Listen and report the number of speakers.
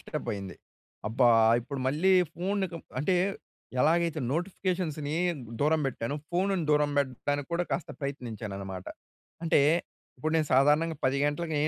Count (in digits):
1